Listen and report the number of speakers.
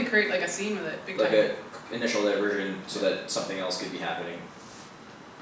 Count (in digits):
2